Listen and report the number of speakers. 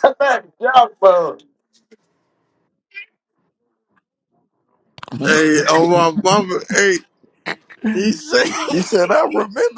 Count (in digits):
3